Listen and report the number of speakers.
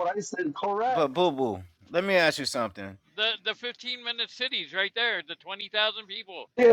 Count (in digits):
3